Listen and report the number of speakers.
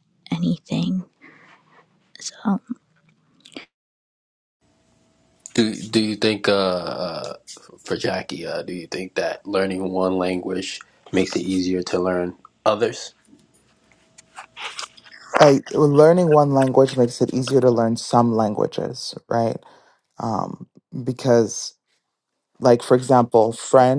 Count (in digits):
3